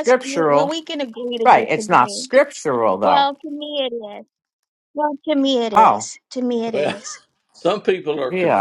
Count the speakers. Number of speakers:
3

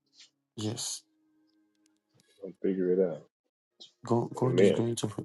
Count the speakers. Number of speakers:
2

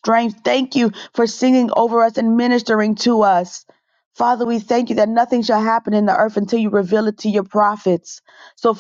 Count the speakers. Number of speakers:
1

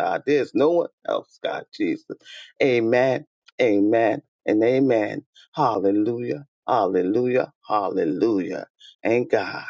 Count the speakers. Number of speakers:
1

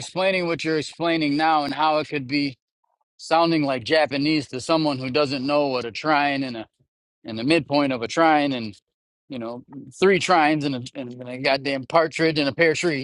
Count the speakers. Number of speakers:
1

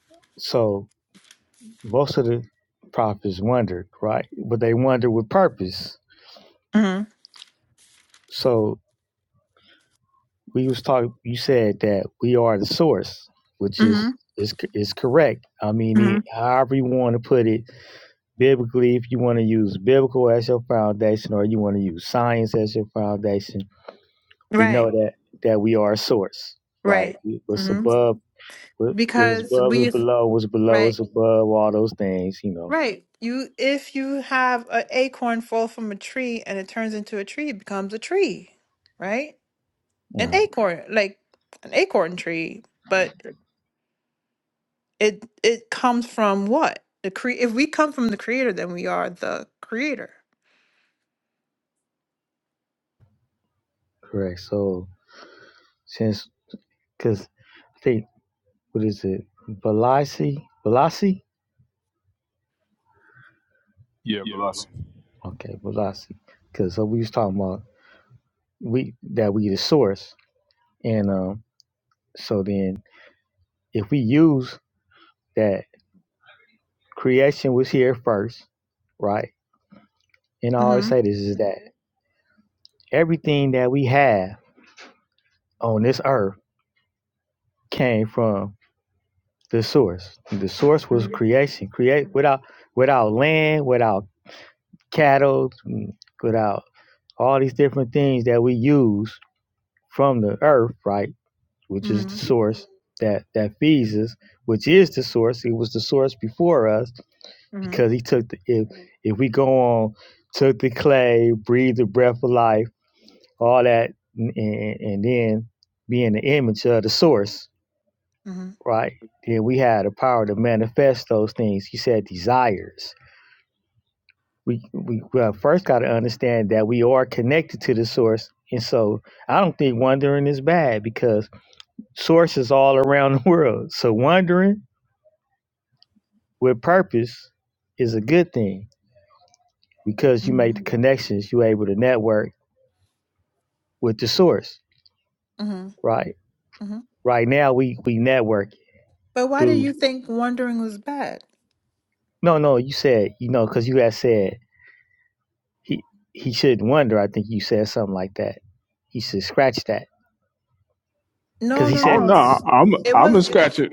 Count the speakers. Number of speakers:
3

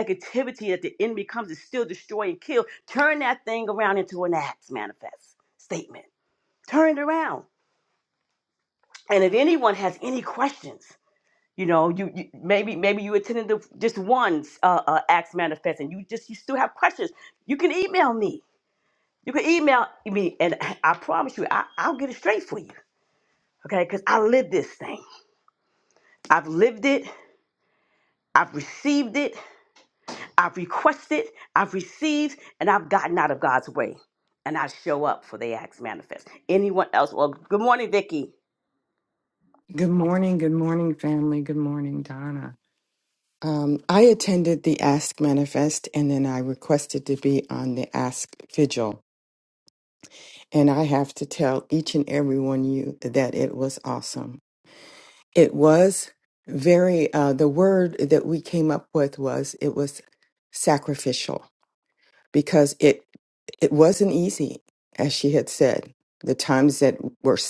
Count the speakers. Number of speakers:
2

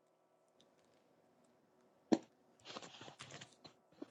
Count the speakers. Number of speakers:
0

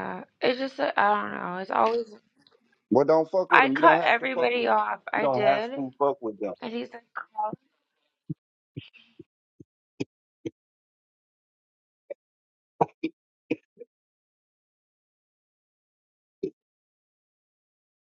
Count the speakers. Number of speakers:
2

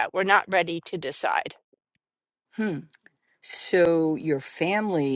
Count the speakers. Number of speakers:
2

